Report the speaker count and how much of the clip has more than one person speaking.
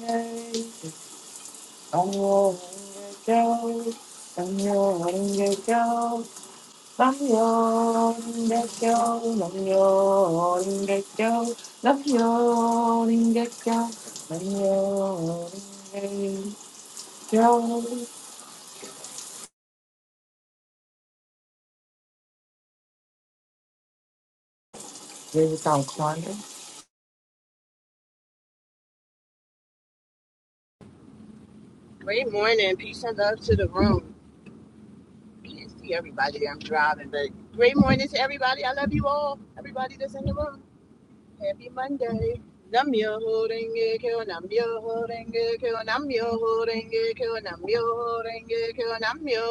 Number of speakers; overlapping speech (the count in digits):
2, no overlap